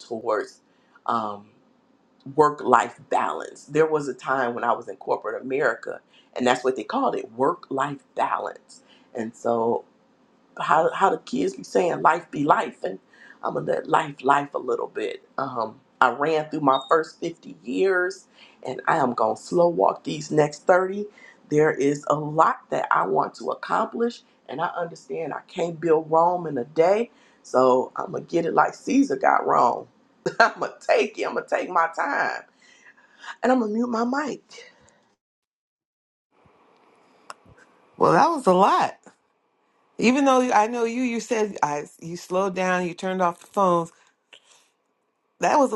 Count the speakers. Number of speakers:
two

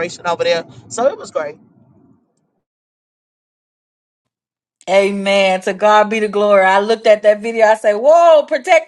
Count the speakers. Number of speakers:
two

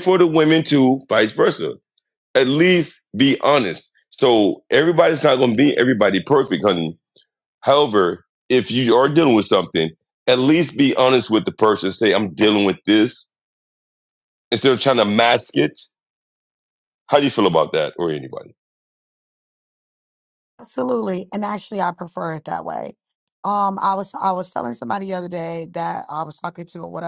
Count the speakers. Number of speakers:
two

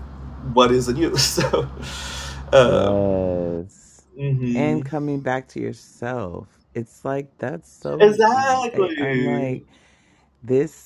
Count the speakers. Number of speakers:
two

